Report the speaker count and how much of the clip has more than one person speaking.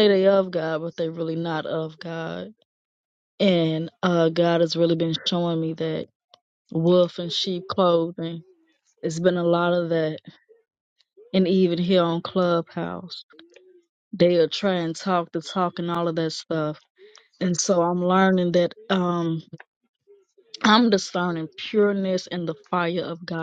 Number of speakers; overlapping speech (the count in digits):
1, no overlap